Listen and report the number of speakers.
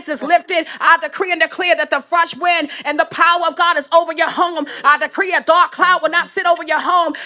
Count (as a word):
one